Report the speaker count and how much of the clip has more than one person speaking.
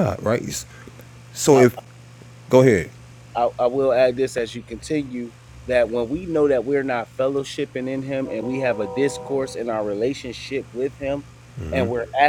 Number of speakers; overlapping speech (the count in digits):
2, about 1%